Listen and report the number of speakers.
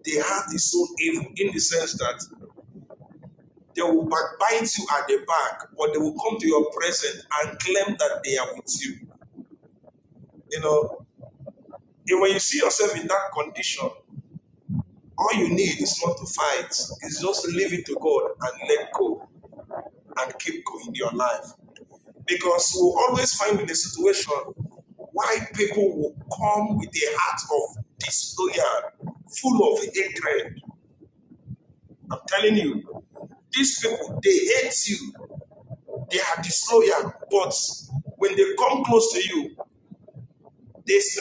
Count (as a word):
one